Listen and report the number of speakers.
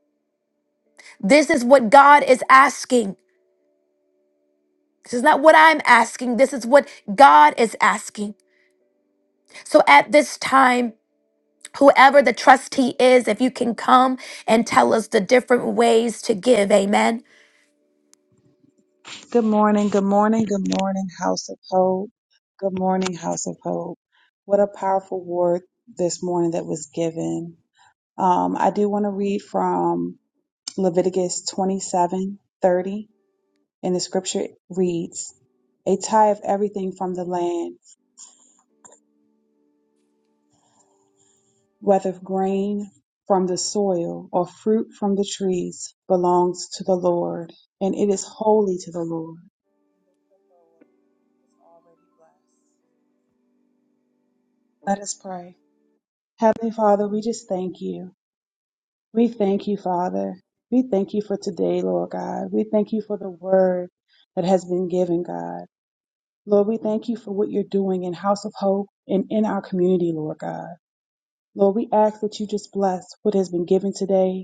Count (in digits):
2